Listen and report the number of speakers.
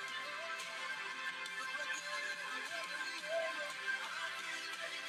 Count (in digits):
0